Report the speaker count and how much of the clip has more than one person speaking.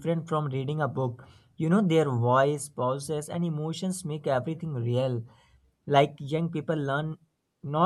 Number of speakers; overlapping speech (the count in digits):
1, no overlap